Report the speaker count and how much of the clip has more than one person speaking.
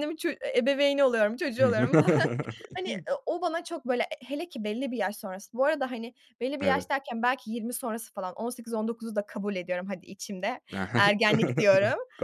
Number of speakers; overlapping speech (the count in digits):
2, about 8%